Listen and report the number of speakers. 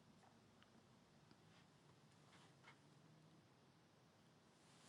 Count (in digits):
0